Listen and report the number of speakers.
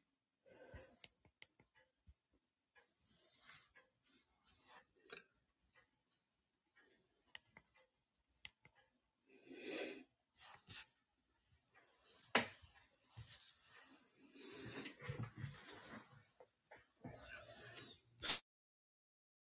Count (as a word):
zero